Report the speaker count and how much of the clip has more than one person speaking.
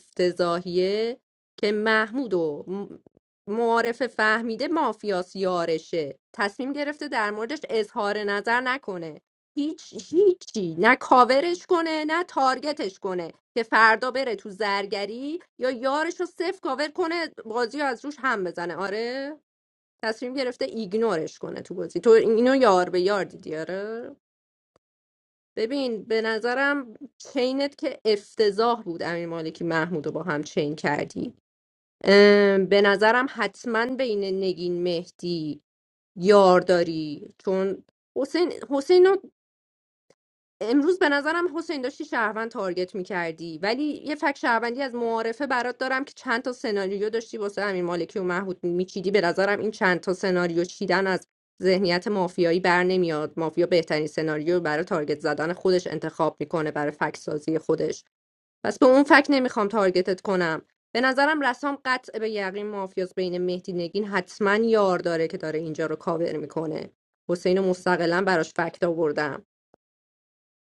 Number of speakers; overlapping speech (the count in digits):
1, no overlap